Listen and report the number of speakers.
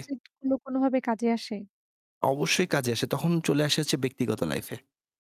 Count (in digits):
2